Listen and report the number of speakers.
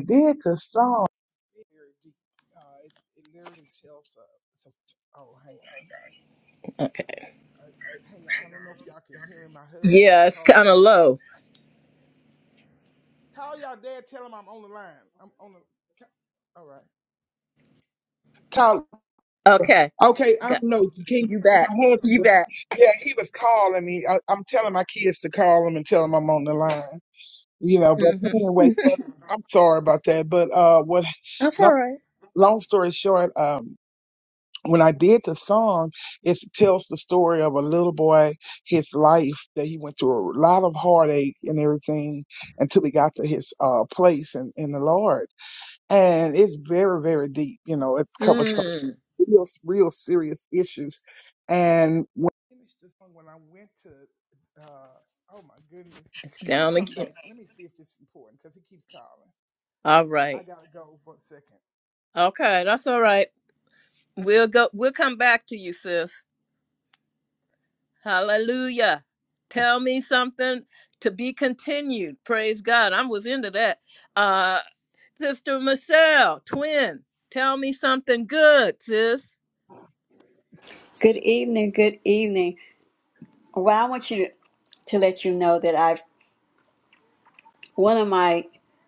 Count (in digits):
3